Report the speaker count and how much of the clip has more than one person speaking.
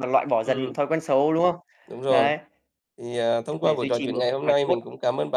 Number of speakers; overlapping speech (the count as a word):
two, about 32%